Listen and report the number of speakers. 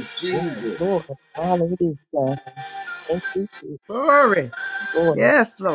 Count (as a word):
three